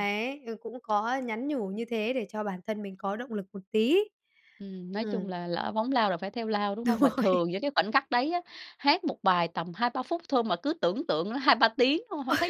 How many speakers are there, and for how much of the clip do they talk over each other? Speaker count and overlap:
two, about 8%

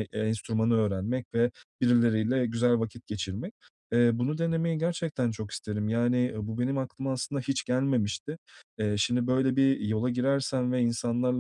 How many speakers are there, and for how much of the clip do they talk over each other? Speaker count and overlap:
one, no overlap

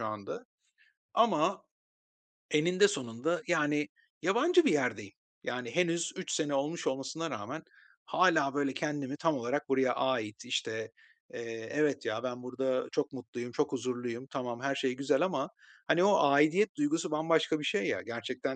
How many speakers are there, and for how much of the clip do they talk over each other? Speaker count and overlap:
one, no overlap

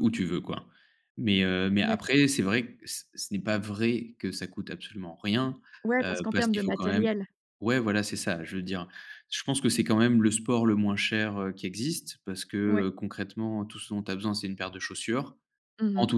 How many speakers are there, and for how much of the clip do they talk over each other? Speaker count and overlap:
two, about 11%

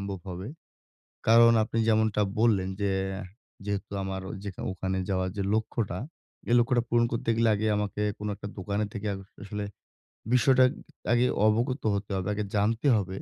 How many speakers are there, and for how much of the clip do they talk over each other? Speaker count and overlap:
one, no overlap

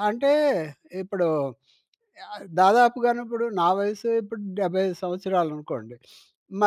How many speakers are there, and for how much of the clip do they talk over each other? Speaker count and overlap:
one, no overlap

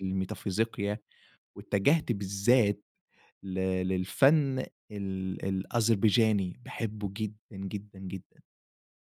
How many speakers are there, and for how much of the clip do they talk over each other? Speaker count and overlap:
one, no overlap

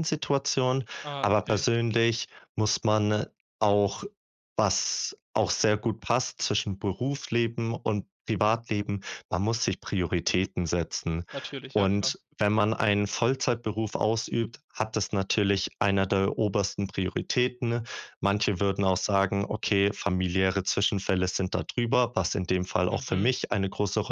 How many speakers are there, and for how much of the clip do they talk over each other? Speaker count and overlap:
two, about 5%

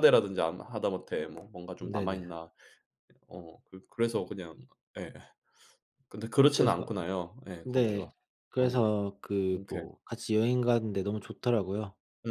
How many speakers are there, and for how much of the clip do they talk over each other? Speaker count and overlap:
two, about 13%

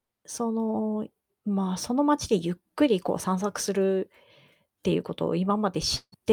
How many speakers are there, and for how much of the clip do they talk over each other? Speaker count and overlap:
one, no overlap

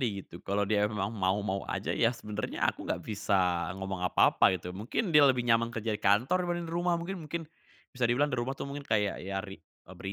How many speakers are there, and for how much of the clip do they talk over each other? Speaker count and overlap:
one, no overlap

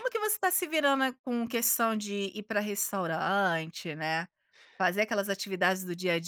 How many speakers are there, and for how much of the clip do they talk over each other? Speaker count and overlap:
one, no overlap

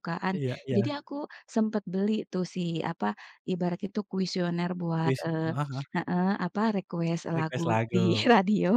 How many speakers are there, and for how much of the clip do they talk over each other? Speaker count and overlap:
two, about 16%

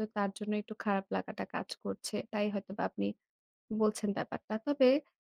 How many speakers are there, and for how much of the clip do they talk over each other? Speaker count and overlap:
one, no overlap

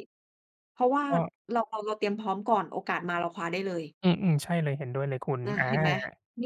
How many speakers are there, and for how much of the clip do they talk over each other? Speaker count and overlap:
two, about 5%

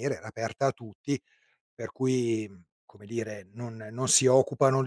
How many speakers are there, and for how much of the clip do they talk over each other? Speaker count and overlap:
one, no overlap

